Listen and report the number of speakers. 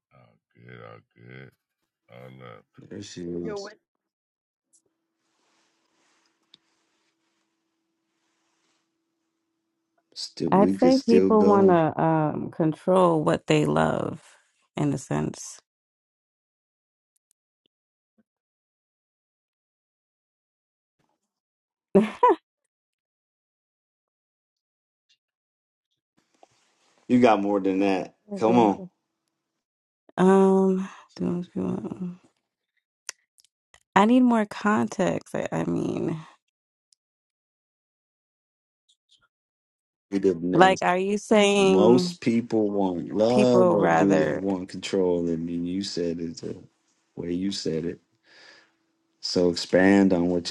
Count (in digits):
3